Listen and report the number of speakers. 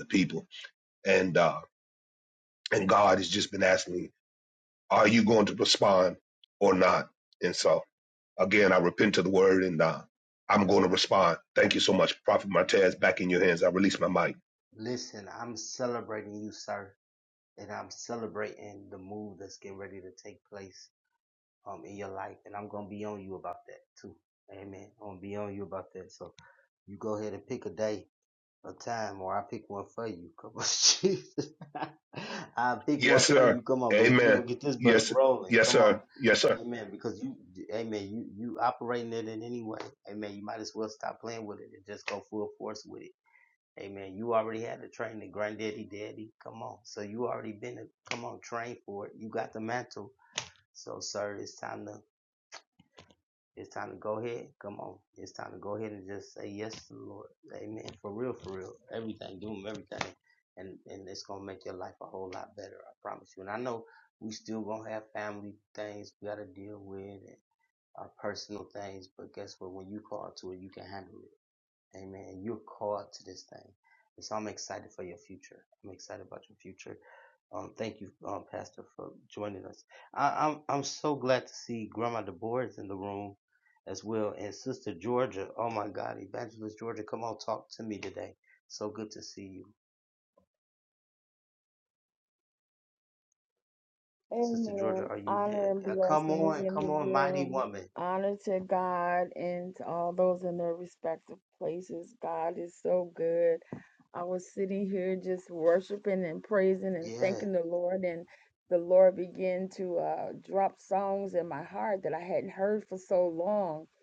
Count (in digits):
3